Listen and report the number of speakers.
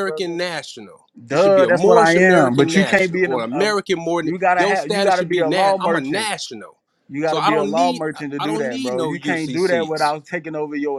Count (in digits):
2